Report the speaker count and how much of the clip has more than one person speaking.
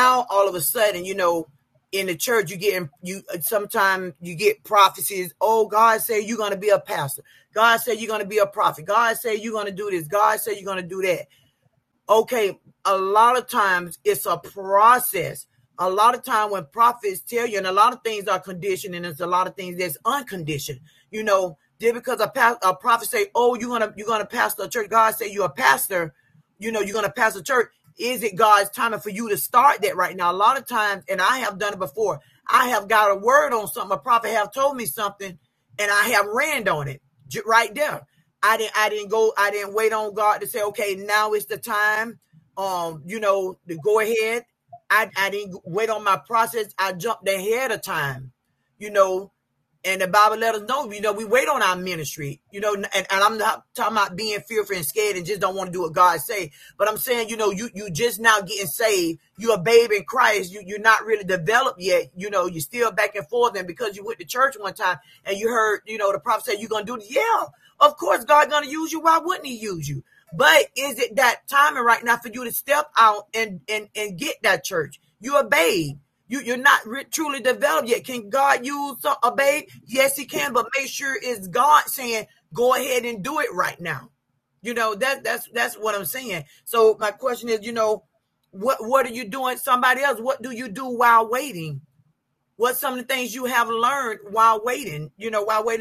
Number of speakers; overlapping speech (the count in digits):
1, no overlap